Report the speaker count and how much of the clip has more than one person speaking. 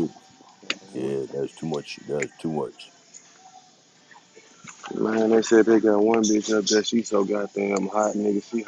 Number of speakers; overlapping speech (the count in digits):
2, no overlap